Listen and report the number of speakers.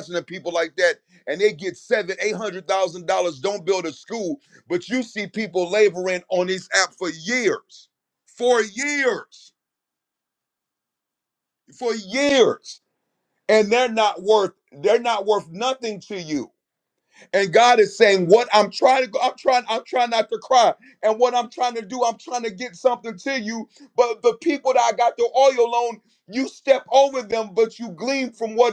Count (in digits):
1